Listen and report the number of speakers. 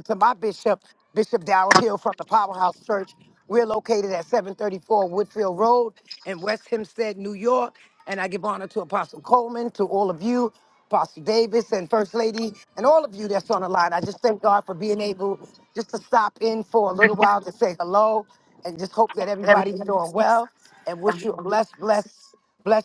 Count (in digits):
1